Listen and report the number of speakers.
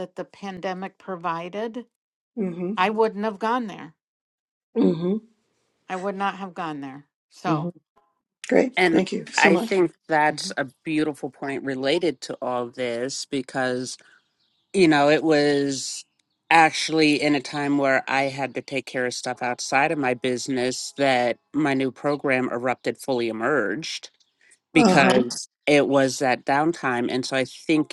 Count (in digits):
3